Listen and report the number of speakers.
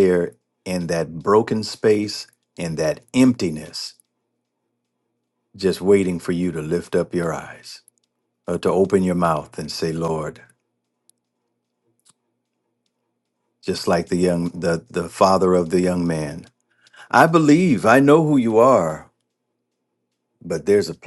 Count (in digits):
1